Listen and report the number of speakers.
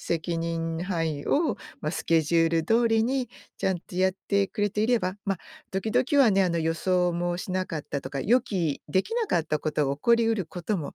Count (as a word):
one